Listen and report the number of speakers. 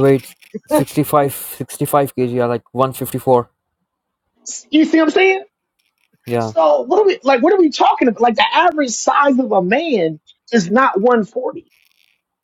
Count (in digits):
2